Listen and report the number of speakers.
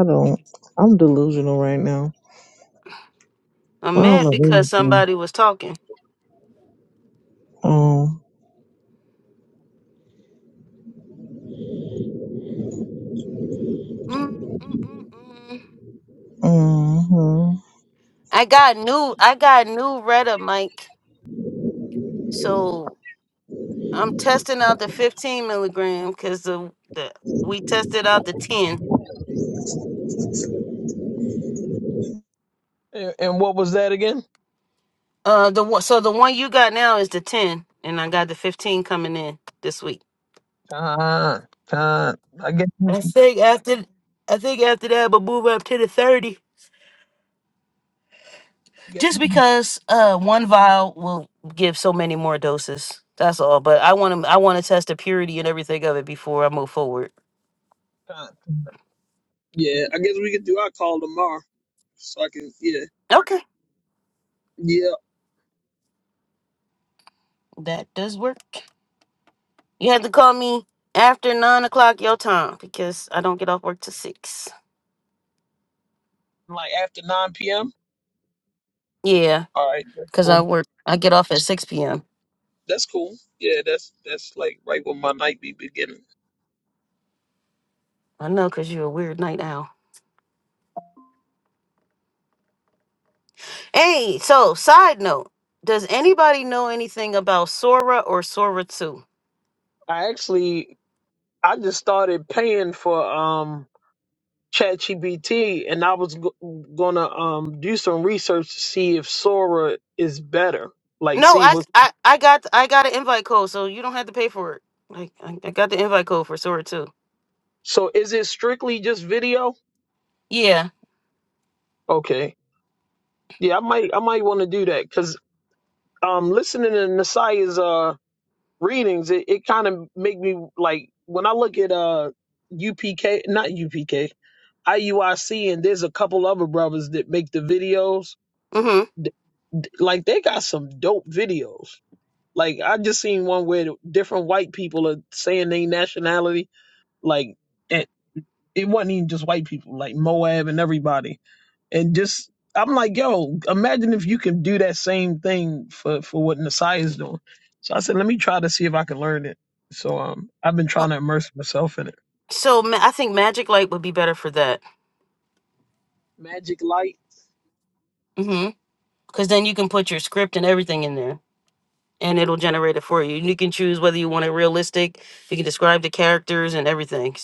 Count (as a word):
three